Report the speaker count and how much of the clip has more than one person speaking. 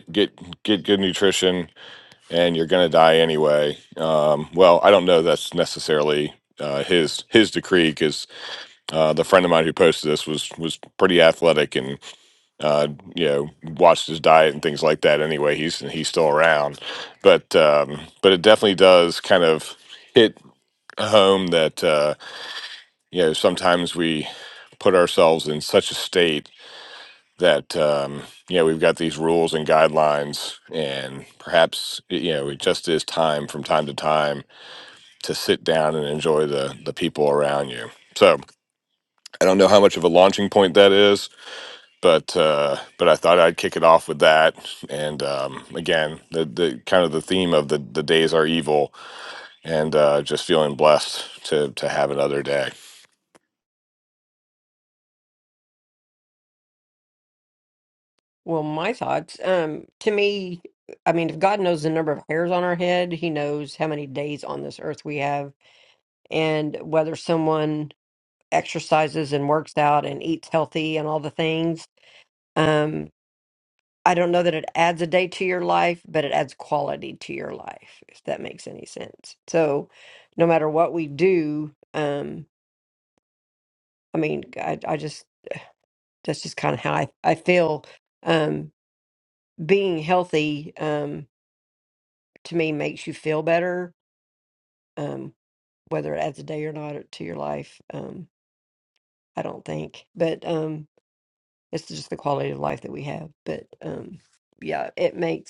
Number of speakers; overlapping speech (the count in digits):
2, no overlap